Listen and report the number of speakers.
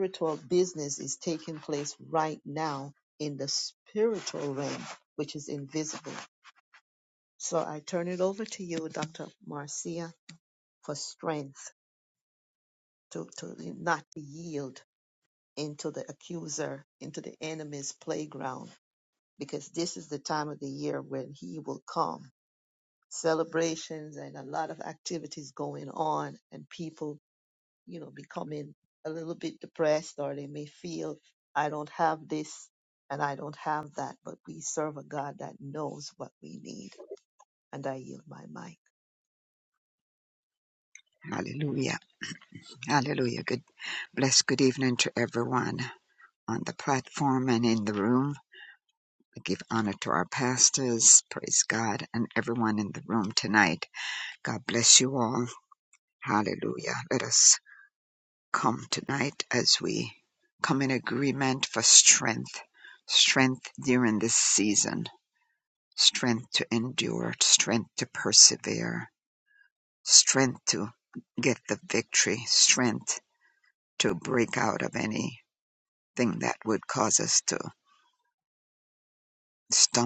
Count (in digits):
2